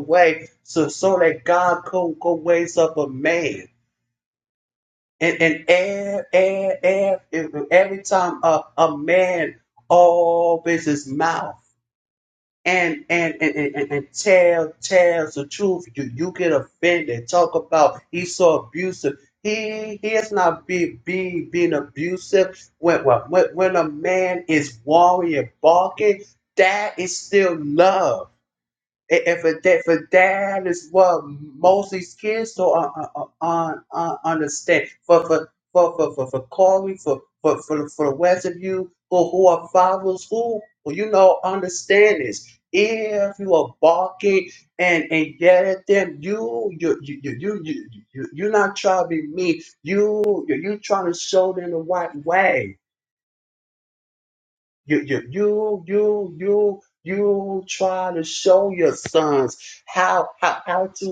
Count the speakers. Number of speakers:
1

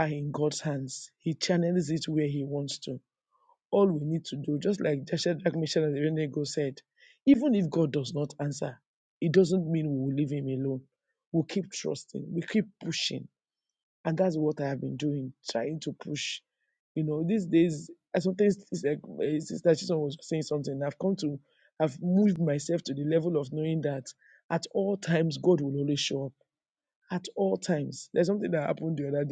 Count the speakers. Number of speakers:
1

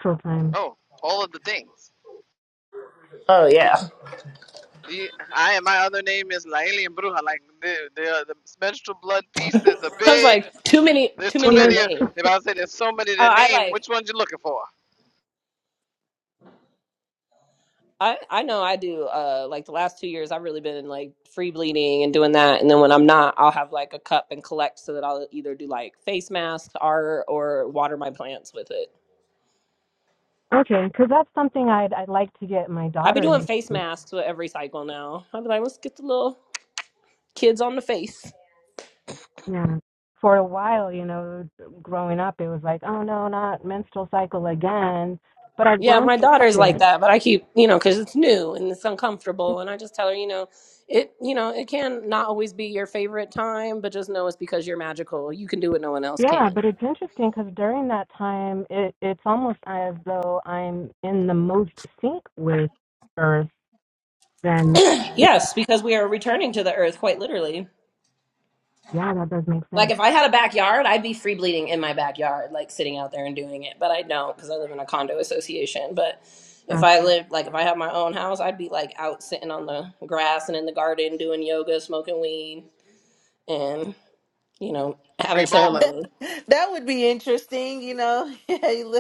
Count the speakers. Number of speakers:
4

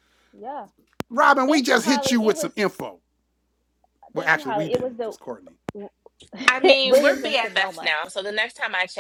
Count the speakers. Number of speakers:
3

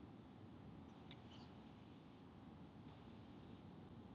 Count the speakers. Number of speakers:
0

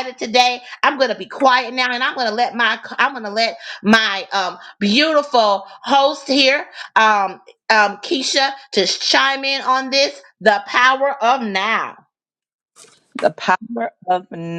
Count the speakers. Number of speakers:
2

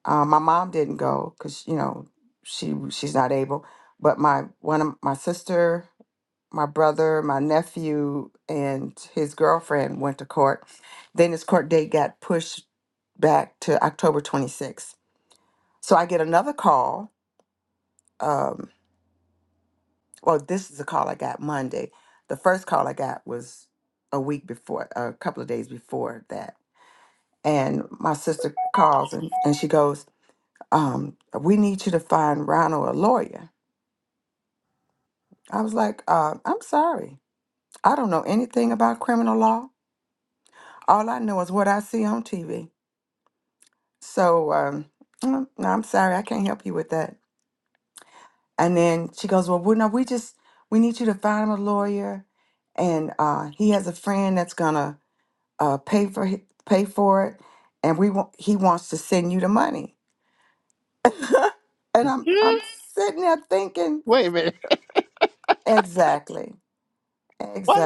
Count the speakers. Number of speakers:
2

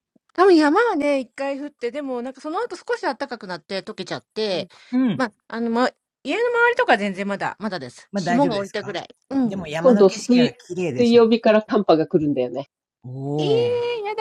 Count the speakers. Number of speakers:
3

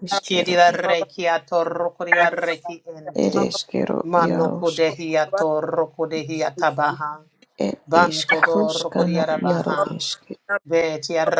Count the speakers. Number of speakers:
2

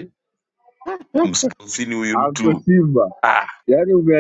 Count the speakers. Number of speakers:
2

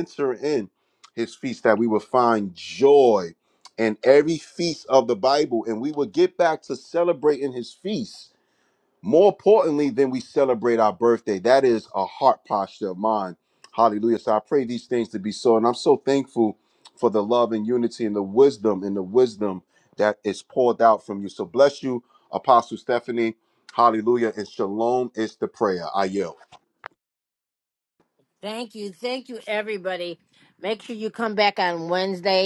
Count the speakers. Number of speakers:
2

